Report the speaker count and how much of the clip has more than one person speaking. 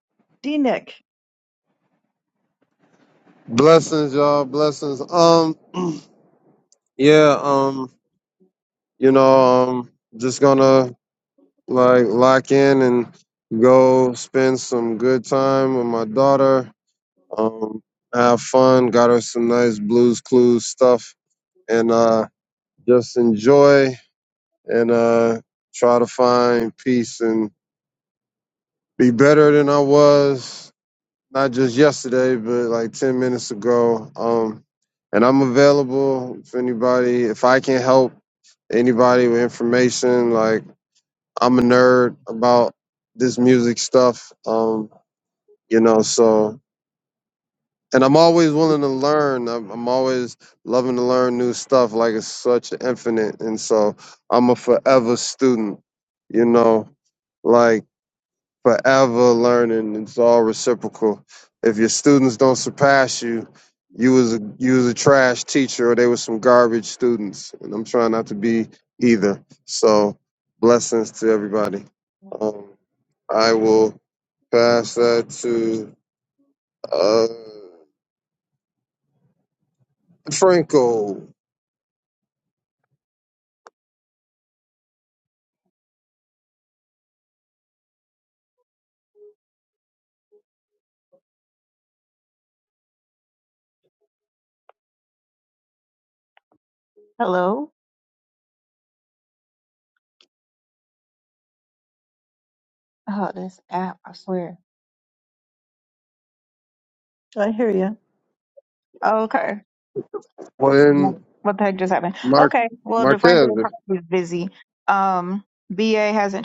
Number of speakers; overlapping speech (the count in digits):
3, about 1%